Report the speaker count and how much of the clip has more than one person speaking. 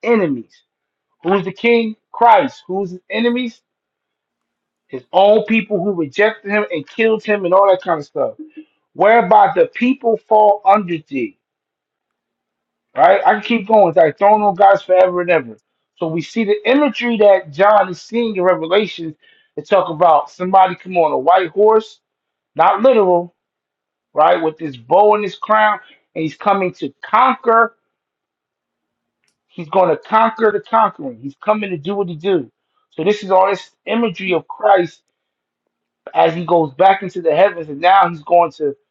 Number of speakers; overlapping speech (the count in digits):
1, no overlap